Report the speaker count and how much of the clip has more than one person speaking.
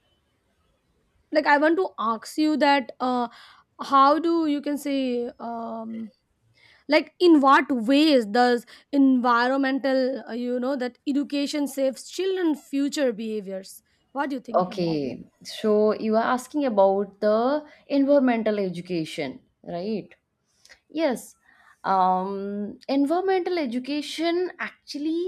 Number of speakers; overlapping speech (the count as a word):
two, about 2%